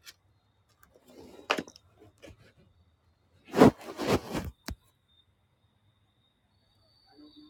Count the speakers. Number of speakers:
0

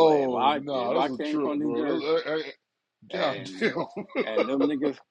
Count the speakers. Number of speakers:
2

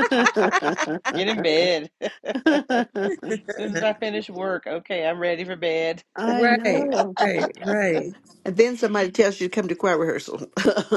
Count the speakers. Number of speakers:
3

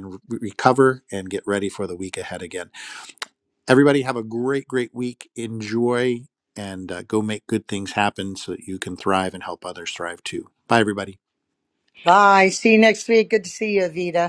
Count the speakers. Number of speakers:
2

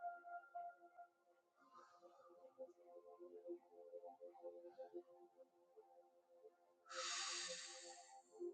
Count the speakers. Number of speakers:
0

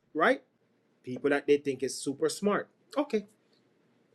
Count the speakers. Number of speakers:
1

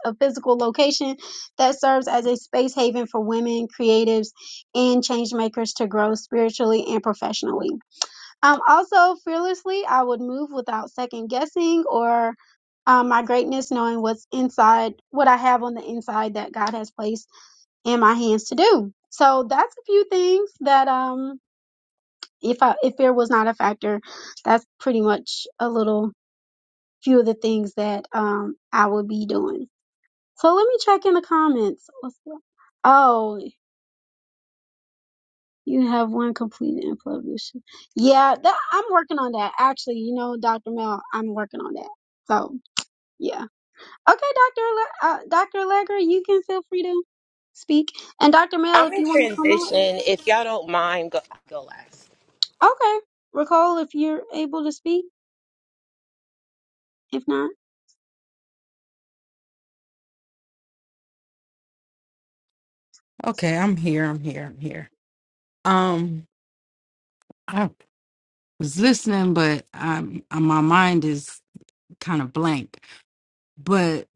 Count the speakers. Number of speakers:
3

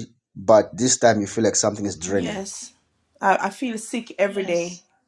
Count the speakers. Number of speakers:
2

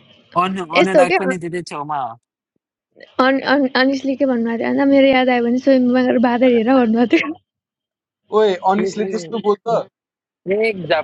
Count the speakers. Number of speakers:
3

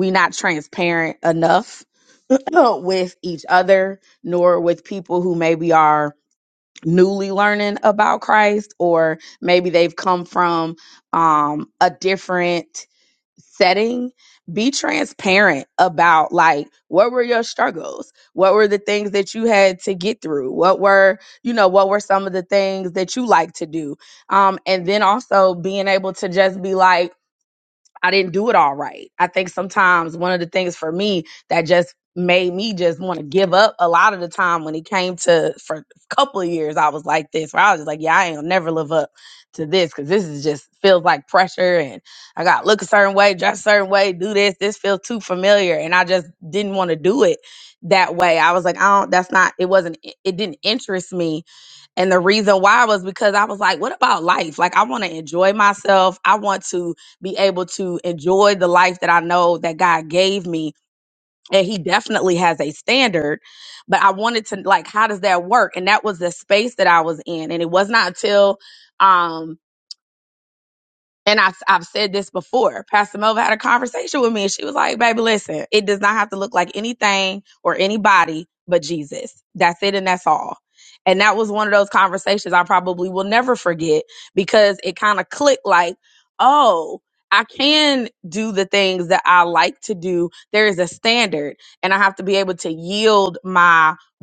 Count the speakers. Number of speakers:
1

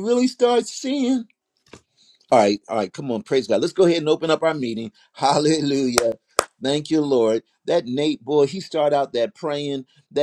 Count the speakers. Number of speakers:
1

